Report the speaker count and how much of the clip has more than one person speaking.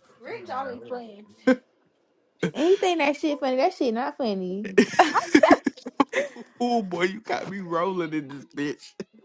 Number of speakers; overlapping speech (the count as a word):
three, no overlap